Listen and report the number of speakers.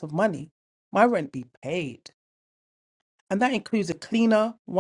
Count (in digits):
1